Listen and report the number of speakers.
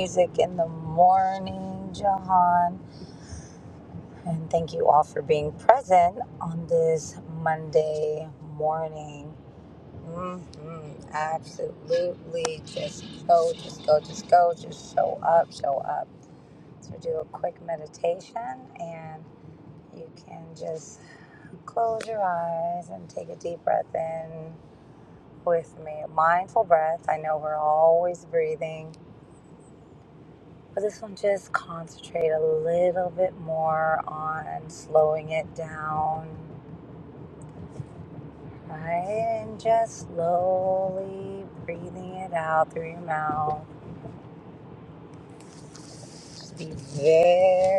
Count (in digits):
1